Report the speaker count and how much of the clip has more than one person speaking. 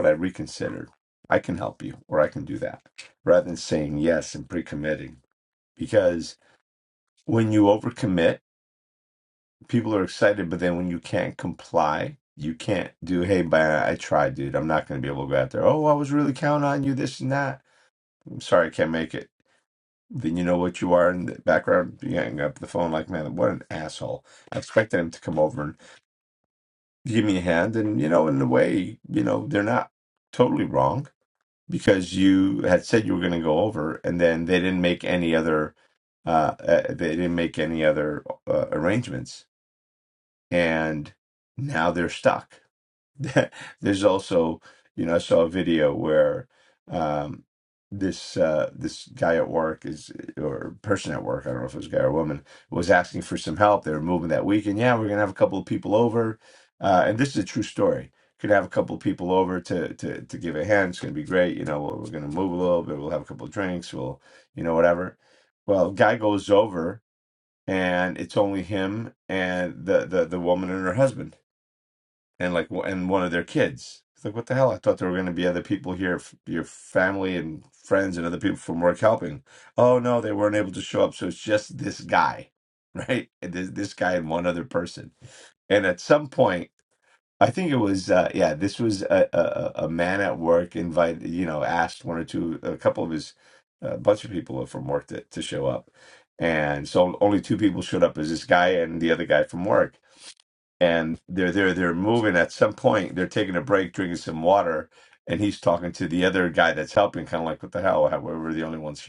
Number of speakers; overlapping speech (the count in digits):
1, no overlap